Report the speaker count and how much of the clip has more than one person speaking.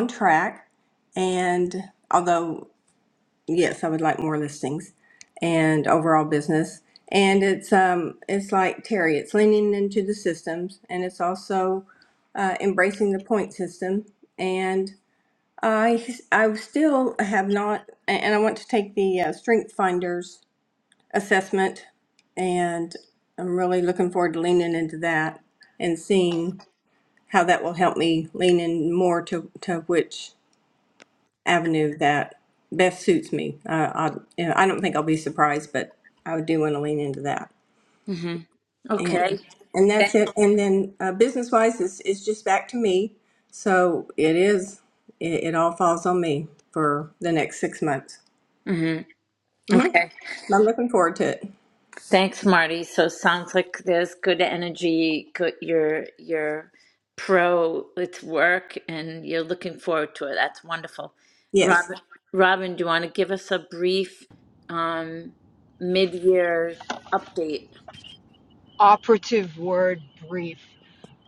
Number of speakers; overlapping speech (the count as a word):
three, about 1%